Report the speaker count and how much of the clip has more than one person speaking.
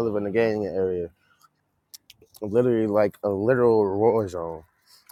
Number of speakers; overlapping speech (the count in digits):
1, no overlap